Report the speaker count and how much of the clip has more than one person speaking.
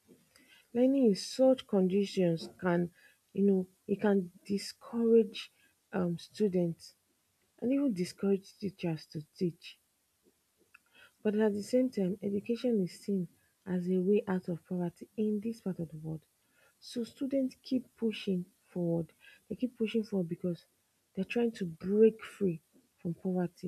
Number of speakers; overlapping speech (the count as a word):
one, no overlap